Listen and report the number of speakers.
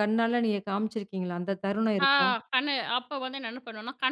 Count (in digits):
2